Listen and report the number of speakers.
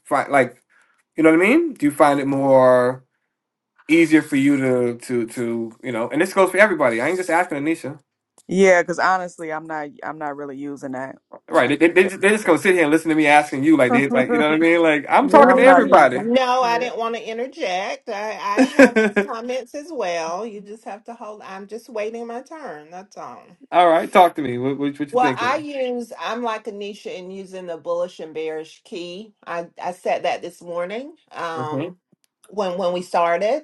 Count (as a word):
three